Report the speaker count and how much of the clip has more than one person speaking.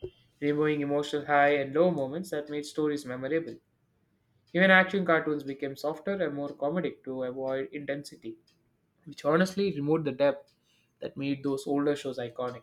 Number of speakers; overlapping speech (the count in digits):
1, no overlap